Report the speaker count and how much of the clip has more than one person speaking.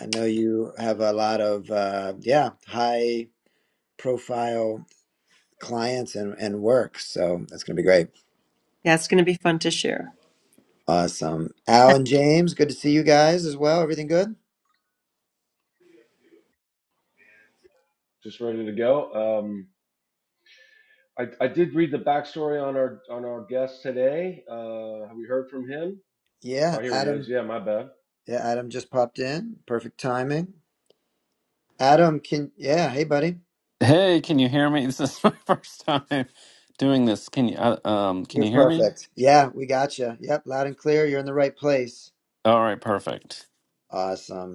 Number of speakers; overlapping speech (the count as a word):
four, about 2%